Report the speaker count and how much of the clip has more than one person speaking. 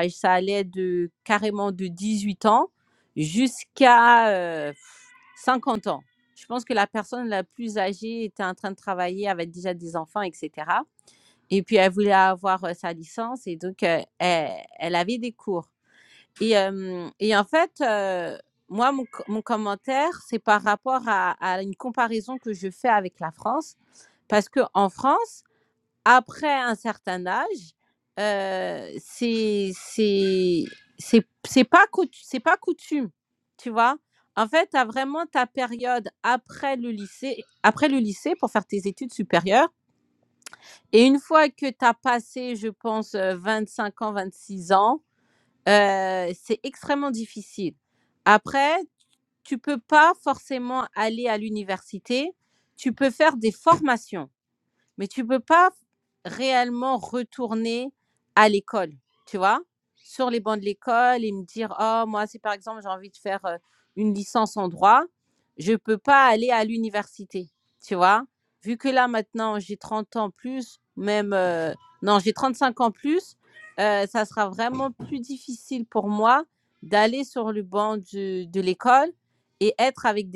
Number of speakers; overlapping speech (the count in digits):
1, no overlap